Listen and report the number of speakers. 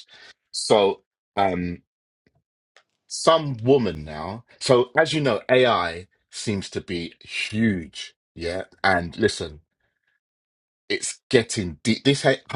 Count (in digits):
1